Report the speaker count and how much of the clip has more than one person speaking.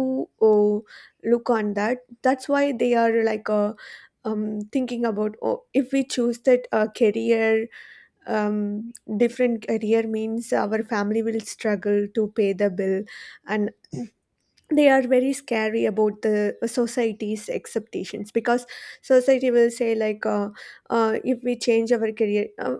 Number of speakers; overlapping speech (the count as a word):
one, no overlap